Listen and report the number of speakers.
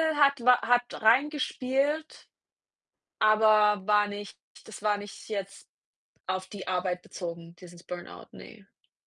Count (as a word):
one